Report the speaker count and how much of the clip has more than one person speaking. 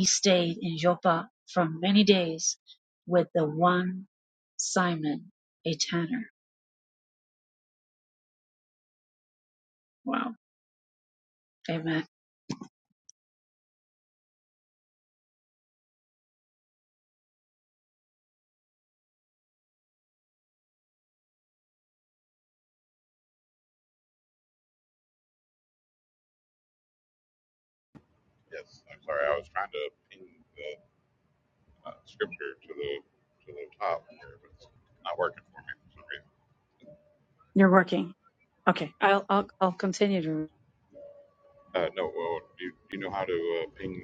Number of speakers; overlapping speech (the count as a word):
two, no overlap